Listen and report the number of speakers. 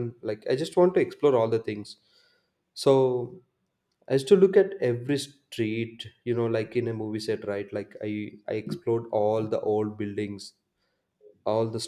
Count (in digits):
1